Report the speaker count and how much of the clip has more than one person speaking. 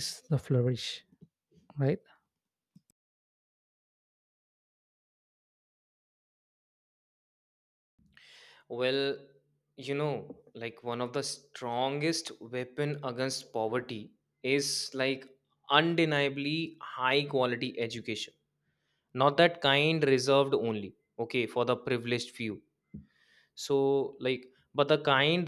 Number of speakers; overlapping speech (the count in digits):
2, no overlap